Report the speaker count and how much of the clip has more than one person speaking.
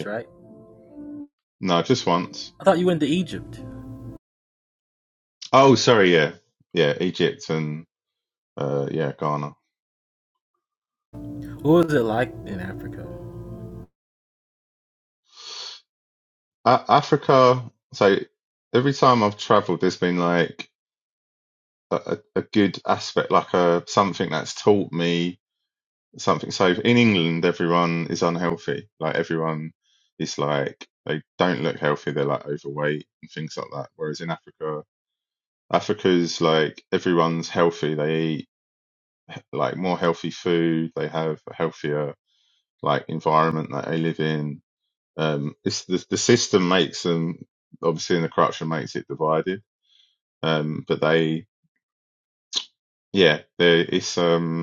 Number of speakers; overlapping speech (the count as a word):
two, under 1%